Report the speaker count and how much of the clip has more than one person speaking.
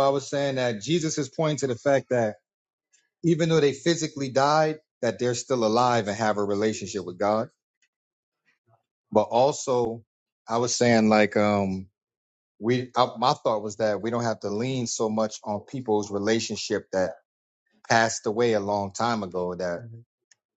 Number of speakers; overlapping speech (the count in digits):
1, no overlap